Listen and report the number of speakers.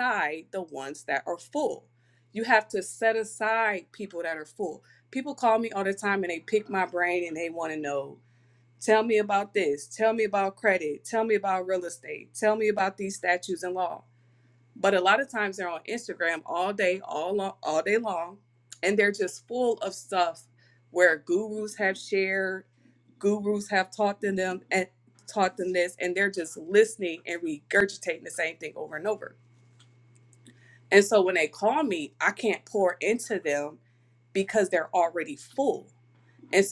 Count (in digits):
1